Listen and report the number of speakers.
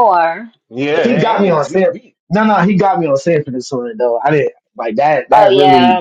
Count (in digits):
3